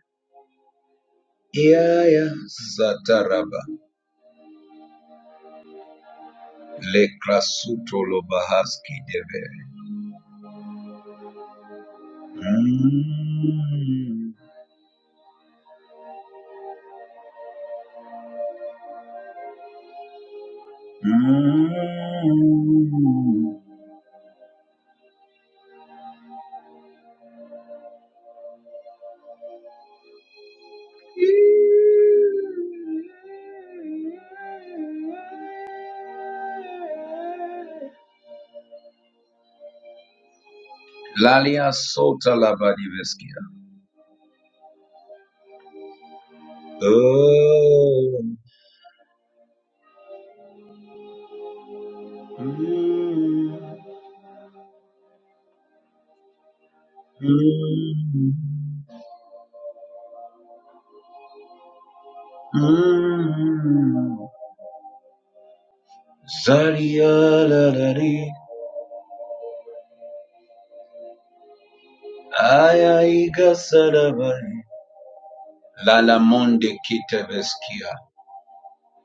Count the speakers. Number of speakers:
1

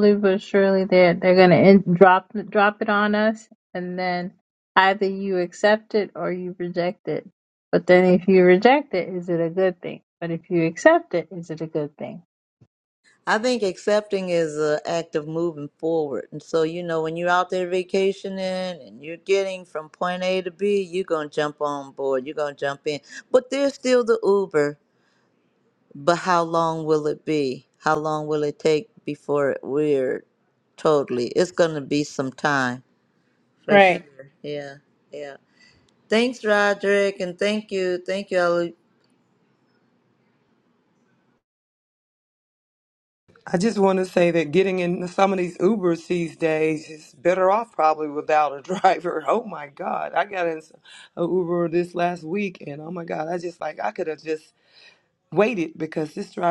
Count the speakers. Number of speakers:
3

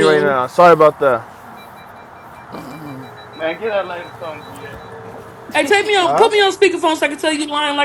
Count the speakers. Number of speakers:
3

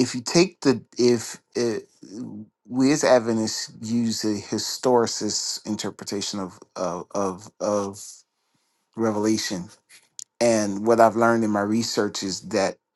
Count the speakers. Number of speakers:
1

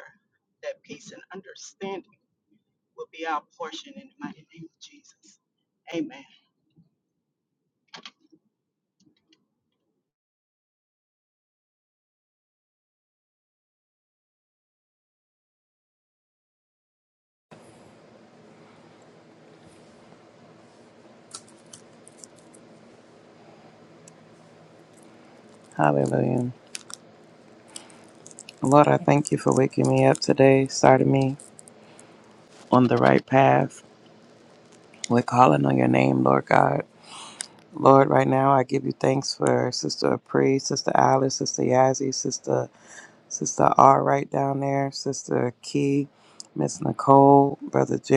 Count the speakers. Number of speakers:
2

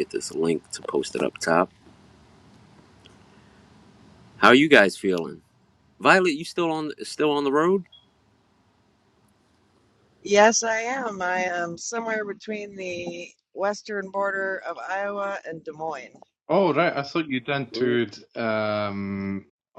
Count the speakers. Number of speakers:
3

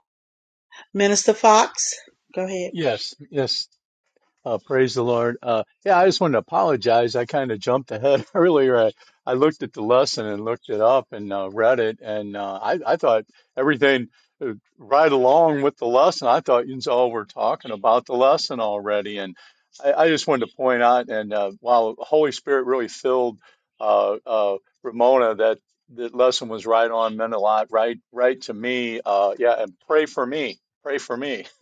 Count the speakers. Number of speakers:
2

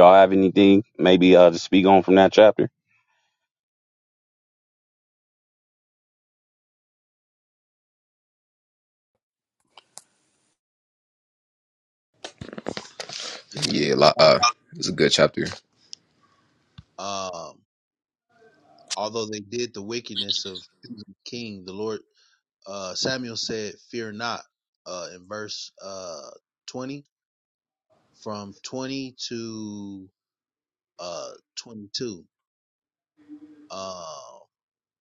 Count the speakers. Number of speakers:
3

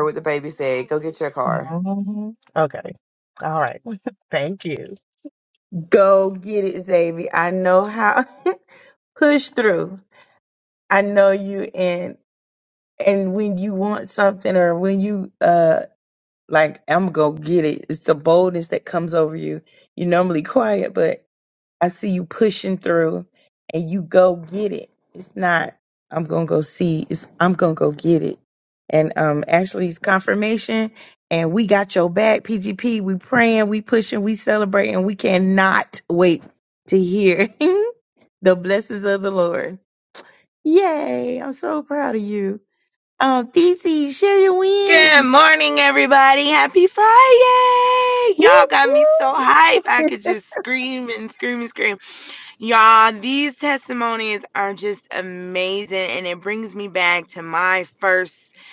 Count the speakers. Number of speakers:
4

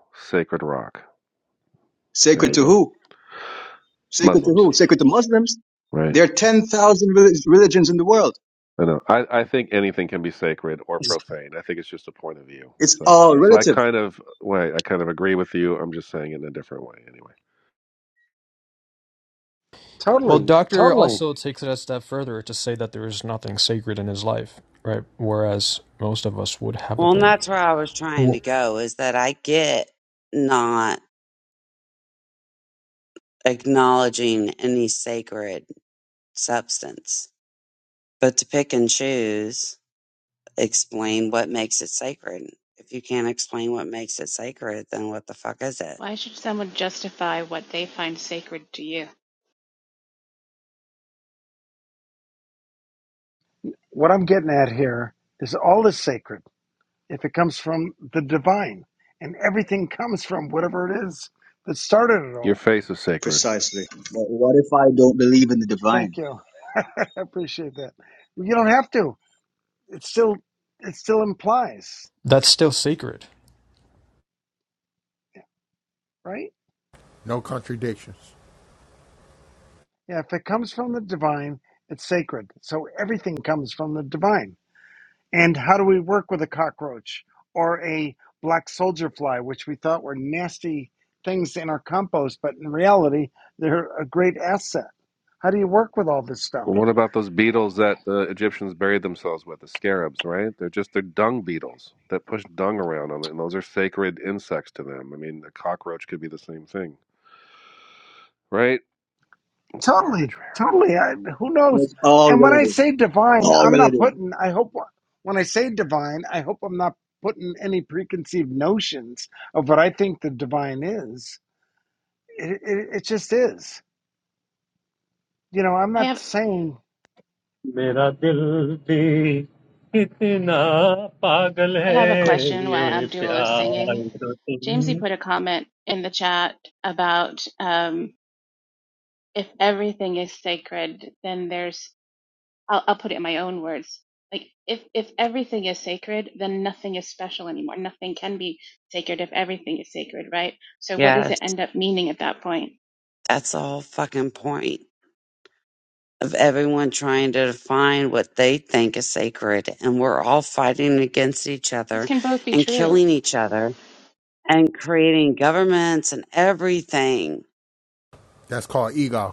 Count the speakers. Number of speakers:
8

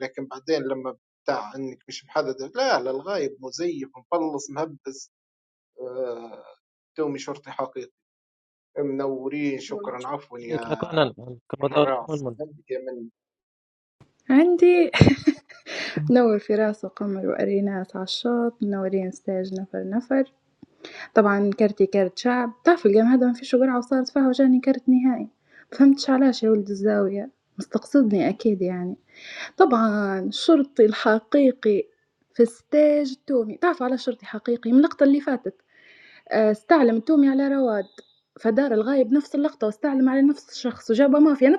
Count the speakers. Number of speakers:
3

